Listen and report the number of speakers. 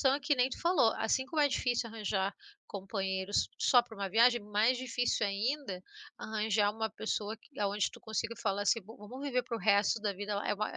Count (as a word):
one